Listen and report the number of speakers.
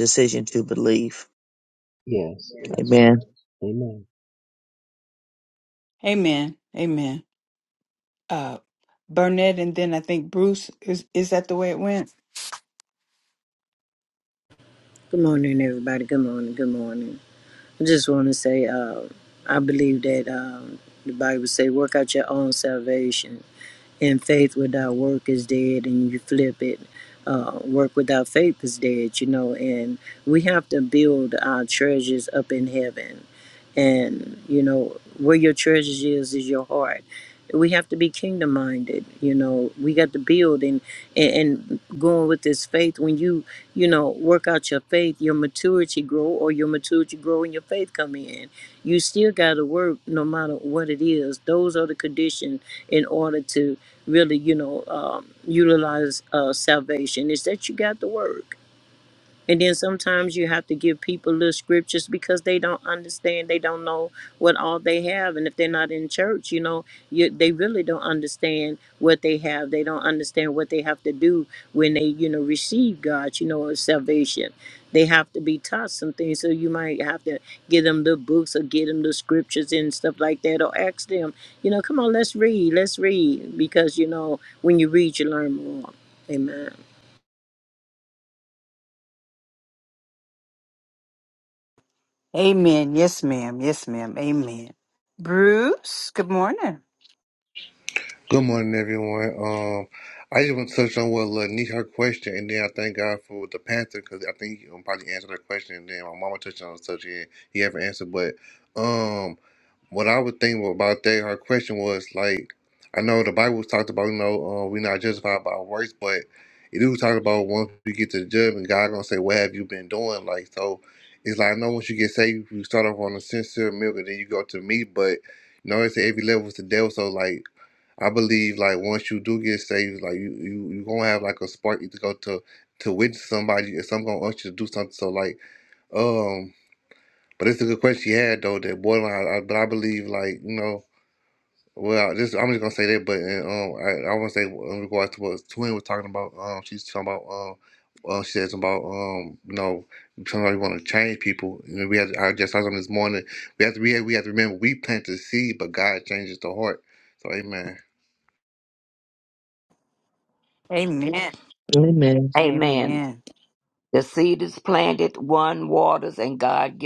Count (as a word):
six